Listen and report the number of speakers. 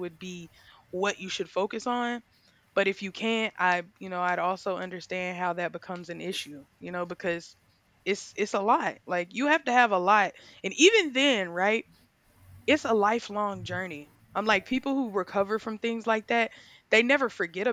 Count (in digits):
1